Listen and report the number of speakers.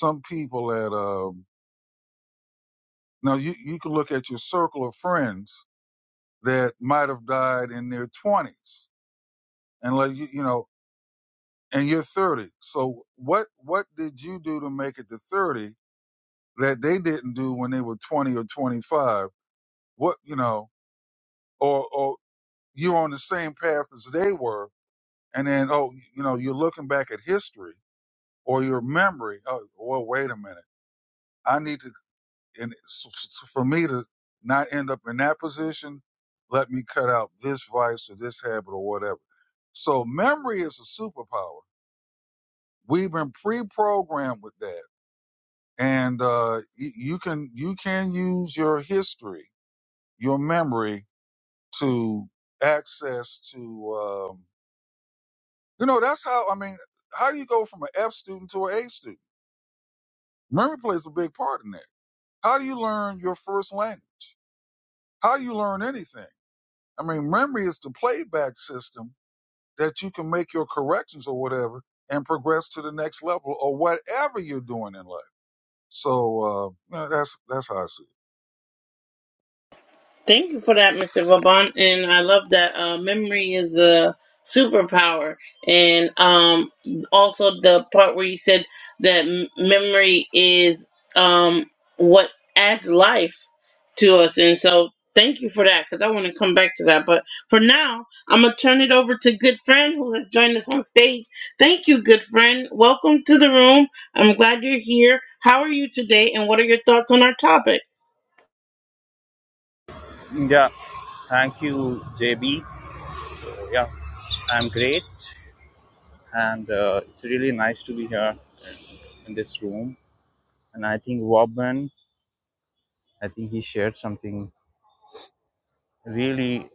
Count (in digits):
3